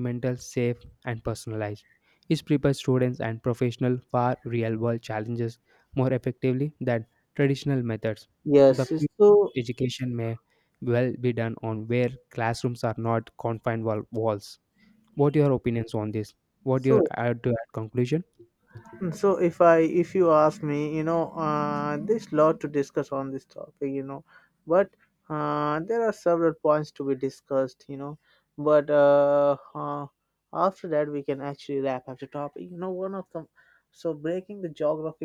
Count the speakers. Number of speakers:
2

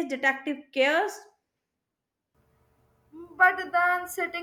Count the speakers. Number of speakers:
2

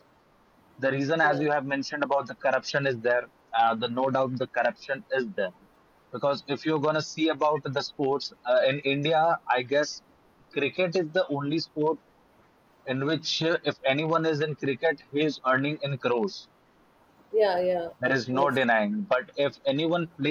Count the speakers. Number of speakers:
2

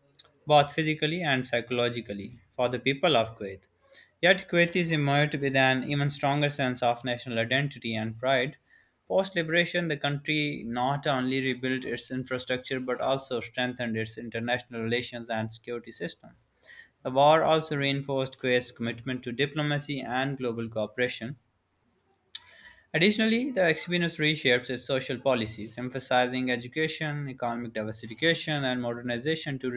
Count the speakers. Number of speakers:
1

